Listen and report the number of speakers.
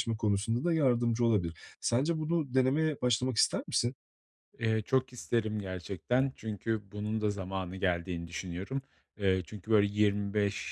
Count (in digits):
2